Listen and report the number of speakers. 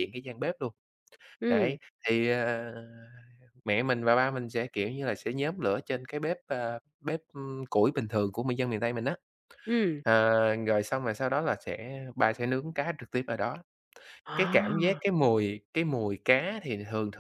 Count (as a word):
two